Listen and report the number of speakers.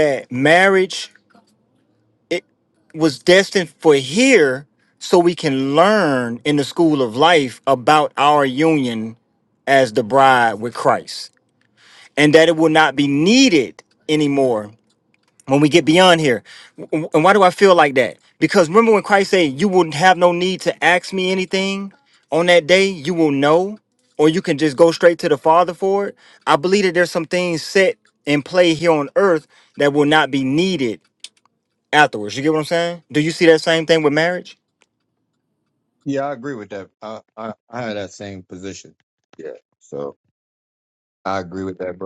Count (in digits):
2